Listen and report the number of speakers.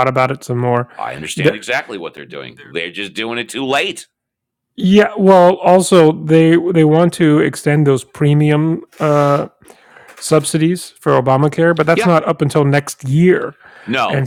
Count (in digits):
2